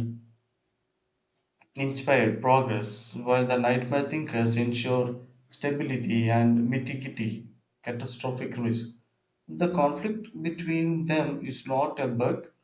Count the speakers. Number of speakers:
1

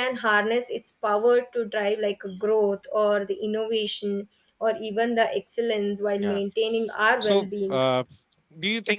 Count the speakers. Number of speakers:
2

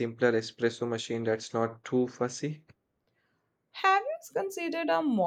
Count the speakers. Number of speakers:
2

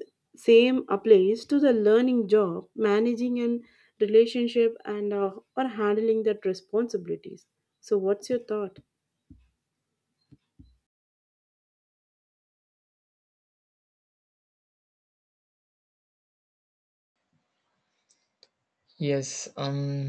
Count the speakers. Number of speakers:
2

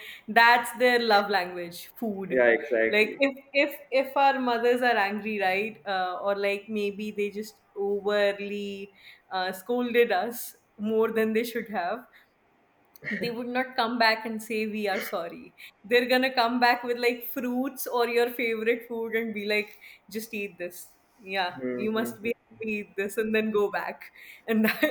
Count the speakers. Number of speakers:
2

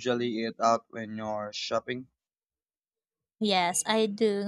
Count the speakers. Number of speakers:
2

